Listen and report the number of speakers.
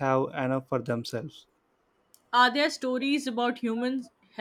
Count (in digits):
2